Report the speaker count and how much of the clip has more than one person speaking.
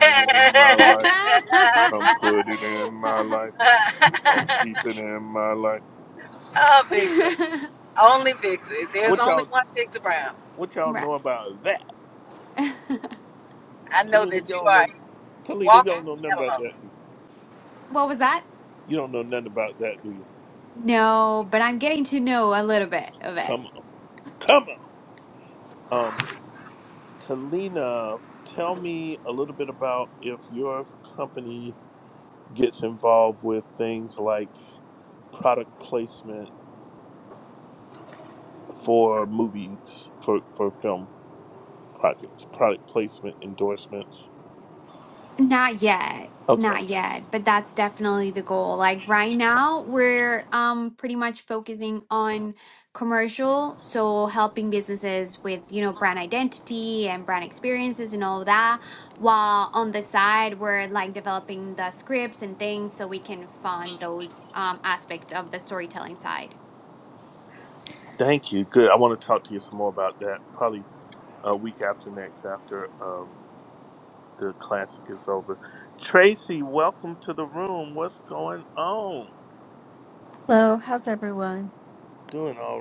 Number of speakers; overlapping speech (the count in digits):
4, about 3%